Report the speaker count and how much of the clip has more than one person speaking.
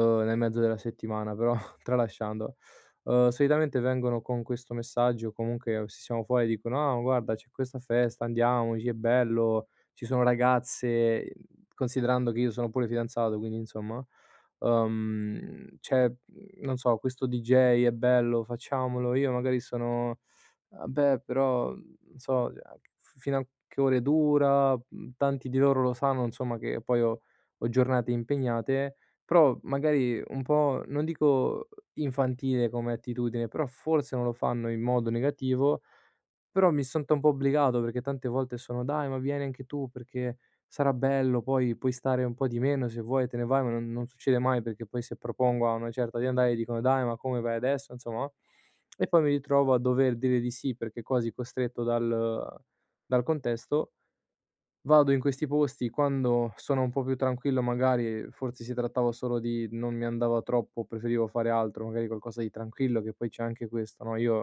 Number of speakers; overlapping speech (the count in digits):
1, no overlap